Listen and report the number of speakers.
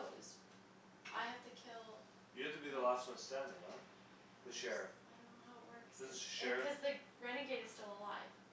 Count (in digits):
2